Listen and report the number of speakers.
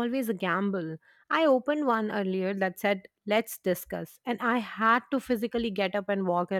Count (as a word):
one